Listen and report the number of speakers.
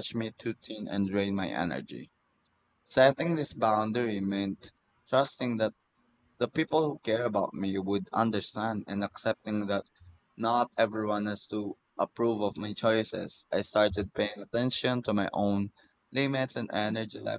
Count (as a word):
one